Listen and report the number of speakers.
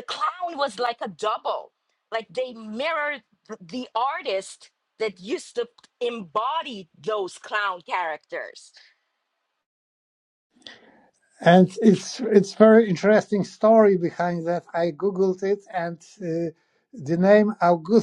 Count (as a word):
two